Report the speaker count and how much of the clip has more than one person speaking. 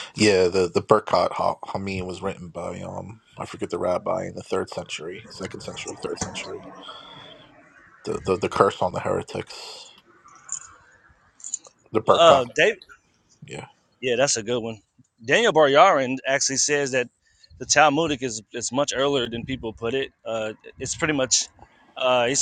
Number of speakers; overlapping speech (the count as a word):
two, about 2%